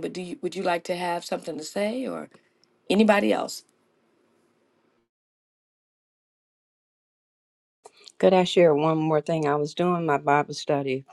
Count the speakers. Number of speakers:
two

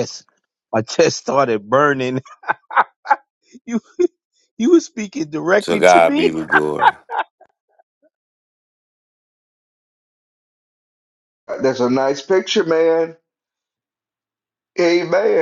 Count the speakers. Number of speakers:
three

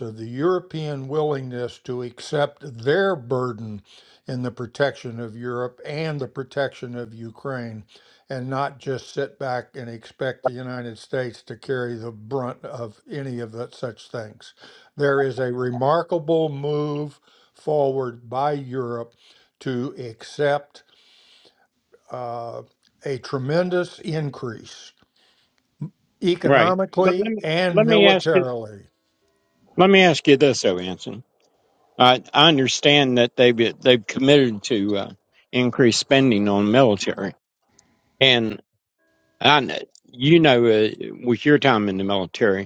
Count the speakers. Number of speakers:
two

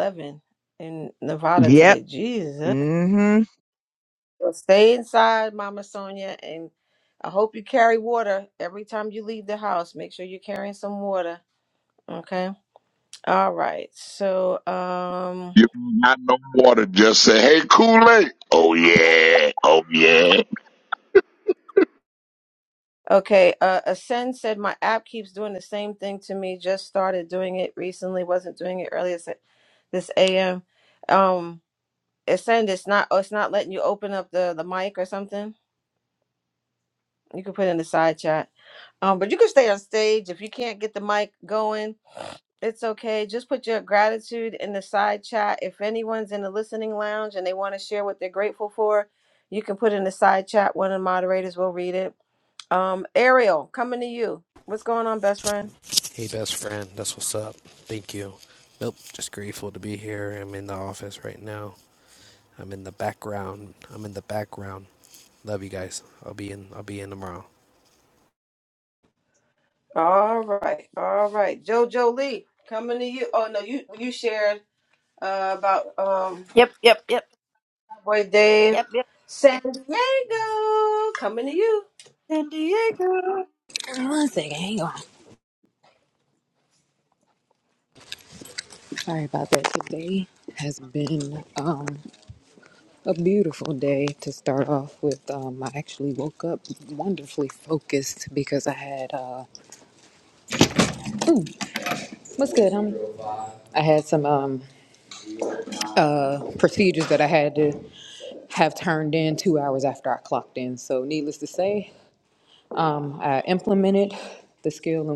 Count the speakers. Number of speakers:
six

